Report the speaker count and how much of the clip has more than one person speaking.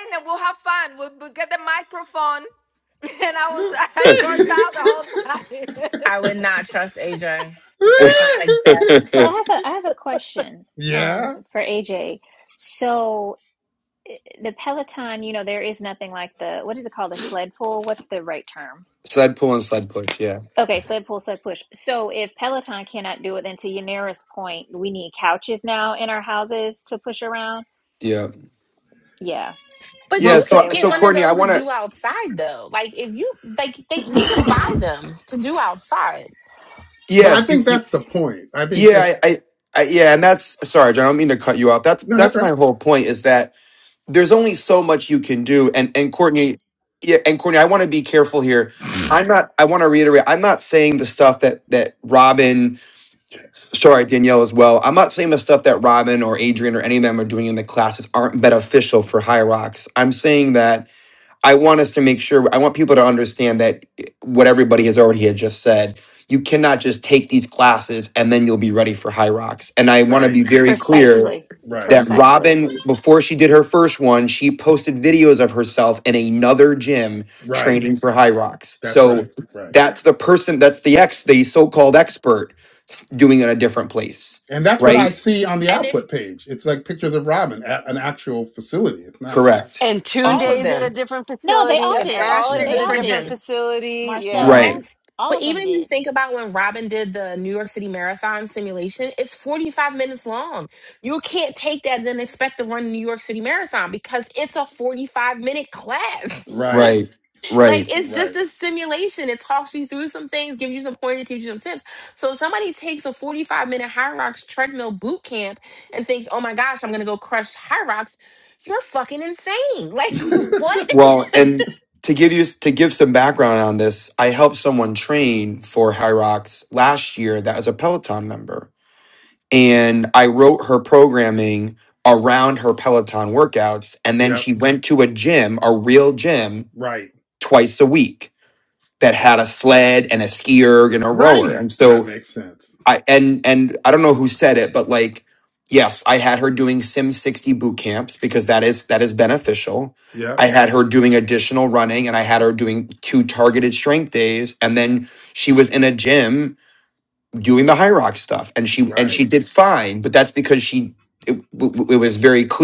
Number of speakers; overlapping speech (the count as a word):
six, about 8%